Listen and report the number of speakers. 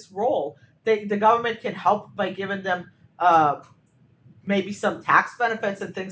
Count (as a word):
one